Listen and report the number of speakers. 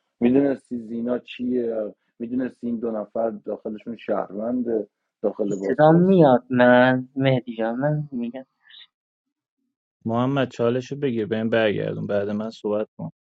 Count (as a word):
three